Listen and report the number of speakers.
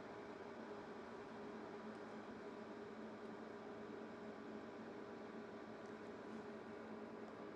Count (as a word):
zero